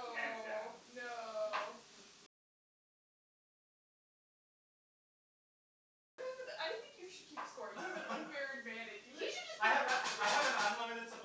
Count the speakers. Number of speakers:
3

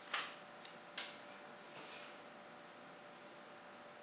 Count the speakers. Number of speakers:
0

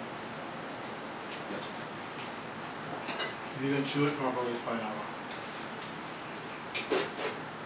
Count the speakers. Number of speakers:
1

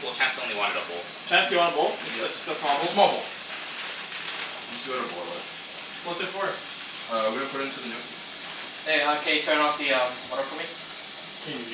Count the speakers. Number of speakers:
4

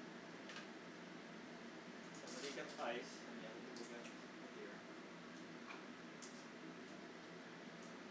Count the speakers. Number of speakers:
1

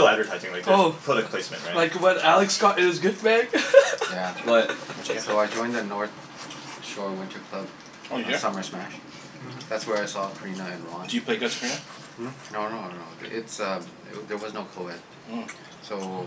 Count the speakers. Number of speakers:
4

